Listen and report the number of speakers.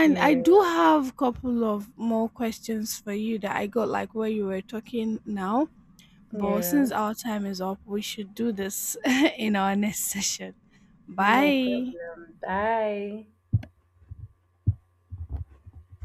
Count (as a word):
two